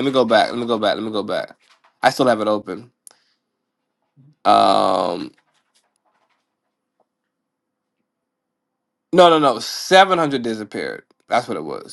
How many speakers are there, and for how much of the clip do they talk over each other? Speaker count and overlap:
1, no overlap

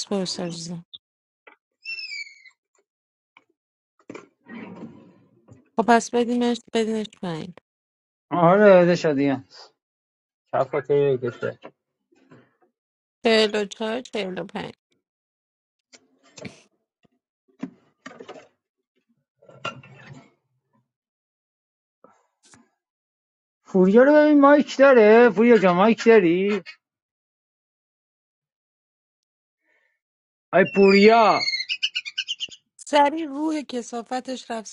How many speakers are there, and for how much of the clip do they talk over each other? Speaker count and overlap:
2, no overlap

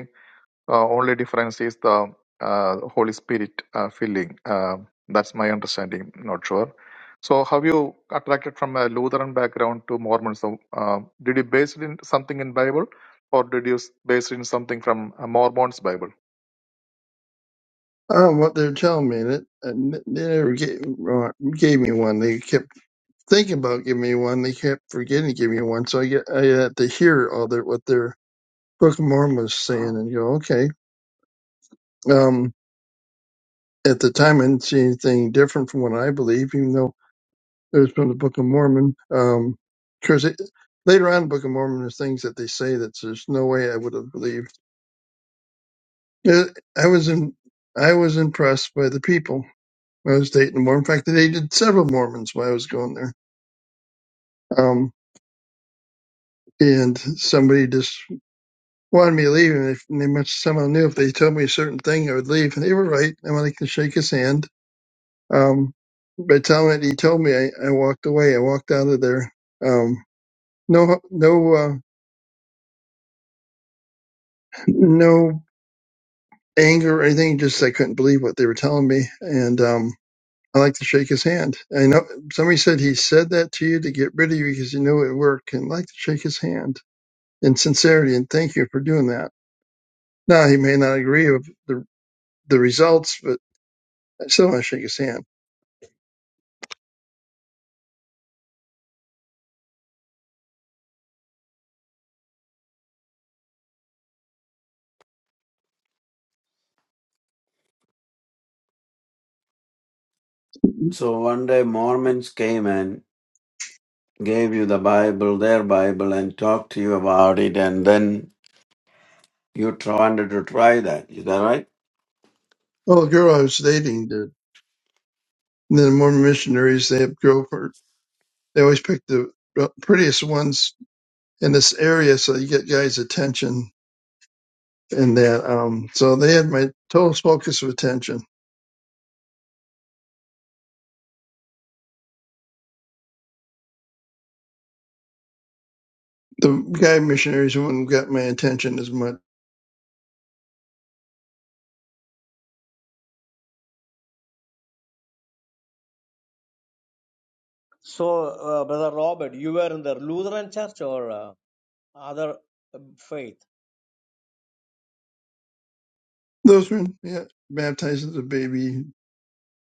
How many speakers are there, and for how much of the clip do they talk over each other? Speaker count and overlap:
4, no overlap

